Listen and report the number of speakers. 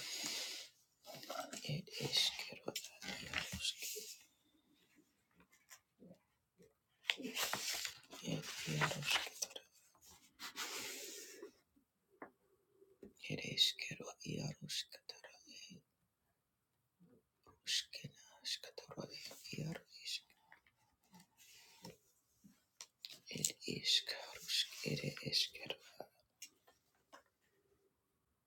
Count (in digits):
1